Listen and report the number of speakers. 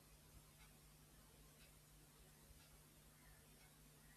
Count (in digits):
0